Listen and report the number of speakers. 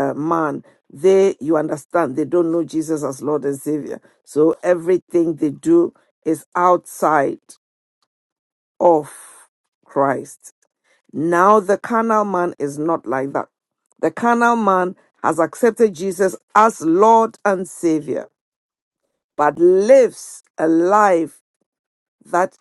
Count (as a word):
one